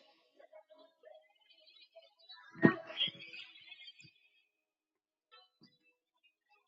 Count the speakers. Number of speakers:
zero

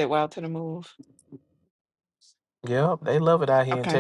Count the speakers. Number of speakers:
two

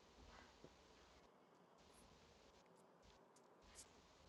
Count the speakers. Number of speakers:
zero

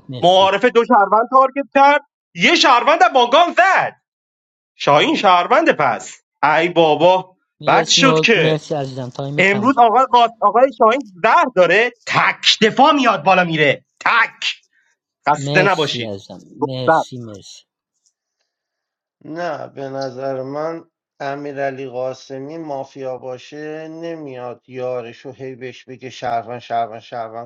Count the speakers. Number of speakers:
three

